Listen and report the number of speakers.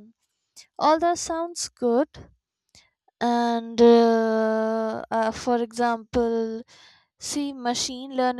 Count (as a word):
one